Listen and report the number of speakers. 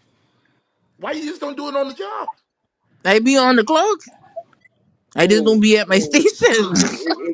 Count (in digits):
3